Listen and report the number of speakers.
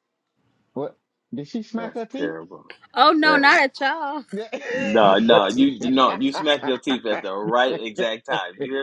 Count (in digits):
3